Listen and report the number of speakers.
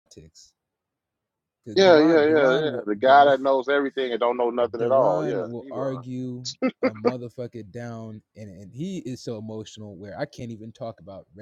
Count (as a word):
two